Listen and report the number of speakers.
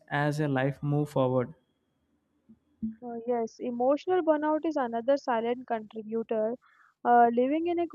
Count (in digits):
2